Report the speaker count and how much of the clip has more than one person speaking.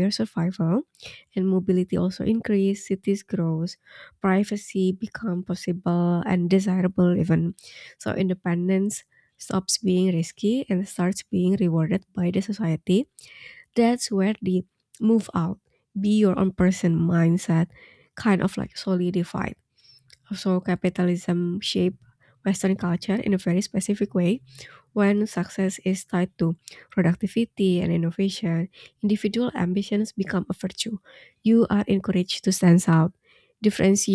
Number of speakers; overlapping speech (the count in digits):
1, no overlap